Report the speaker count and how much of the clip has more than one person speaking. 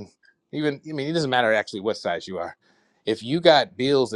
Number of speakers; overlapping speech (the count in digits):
1, no overlap